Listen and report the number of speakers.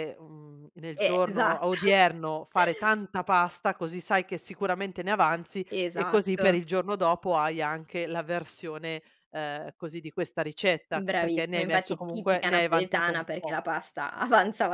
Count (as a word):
two